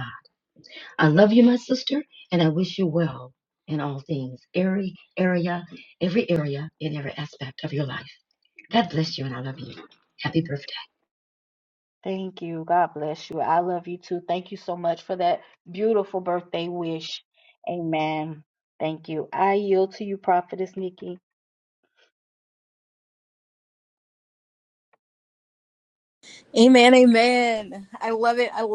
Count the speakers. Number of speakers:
3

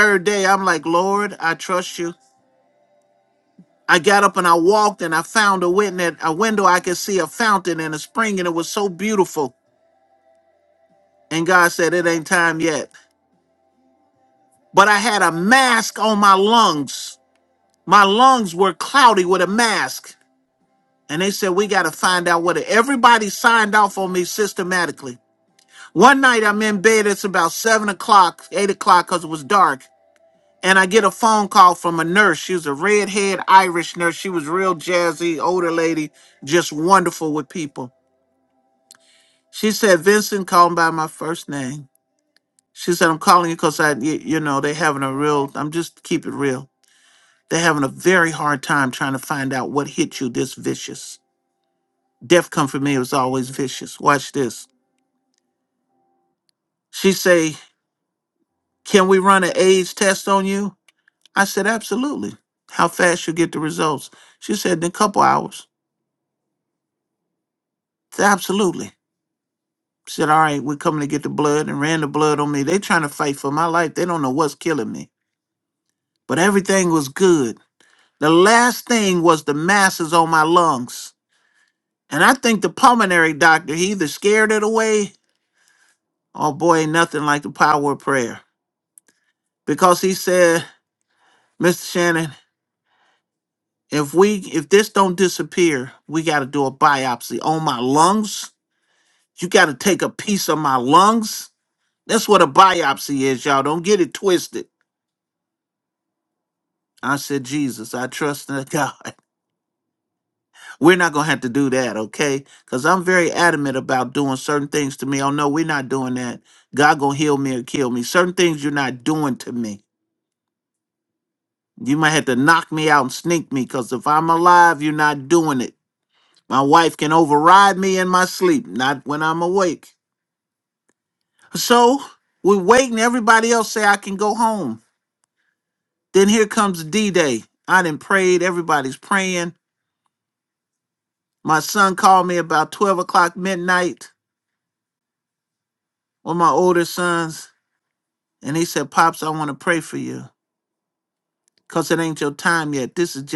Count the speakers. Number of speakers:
1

